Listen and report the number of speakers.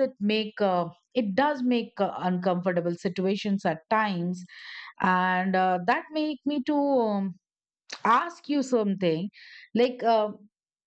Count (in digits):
1